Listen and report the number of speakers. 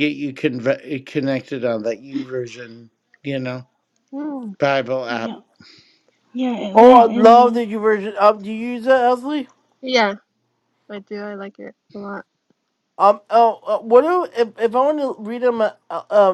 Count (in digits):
4